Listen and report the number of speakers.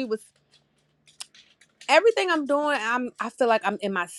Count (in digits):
1